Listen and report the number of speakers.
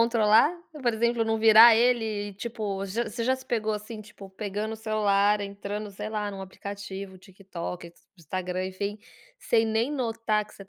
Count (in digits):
1